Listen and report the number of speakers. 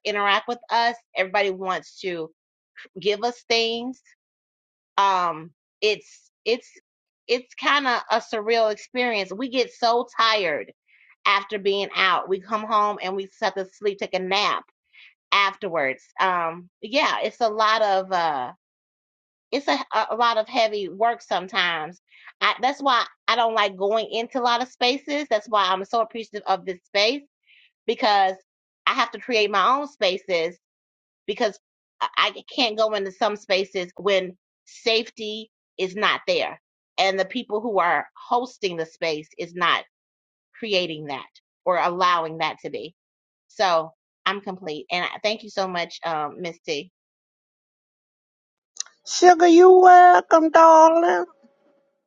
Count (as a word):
two